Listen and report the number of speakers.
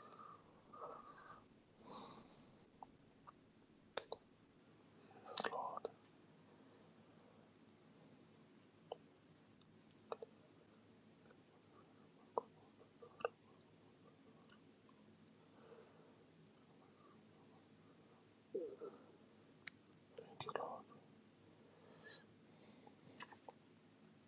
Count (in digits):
0